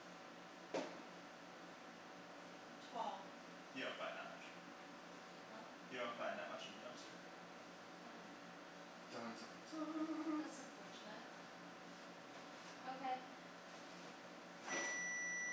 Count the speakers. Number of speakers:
3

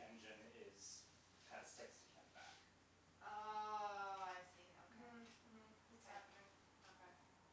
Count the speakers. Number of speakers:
3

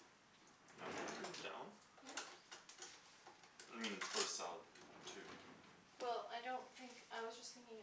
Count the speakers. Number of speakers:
2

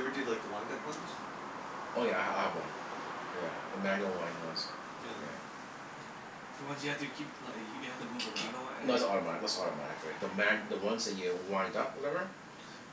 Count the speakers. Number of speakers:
3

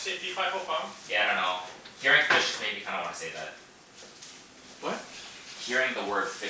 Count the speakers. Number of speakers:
2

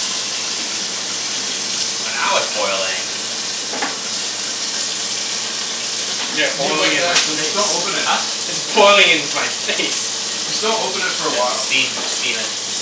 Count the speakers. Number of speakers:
3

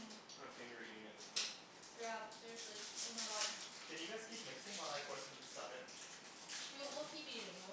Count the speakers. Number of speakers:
3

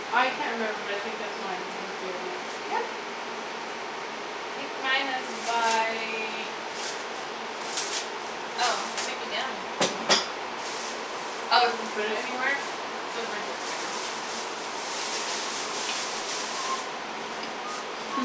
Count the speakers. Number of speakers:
2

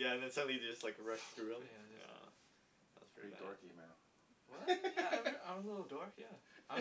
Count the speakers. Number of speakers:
3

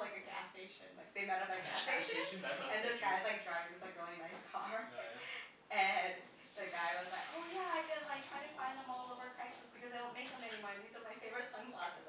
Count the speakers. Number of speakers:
2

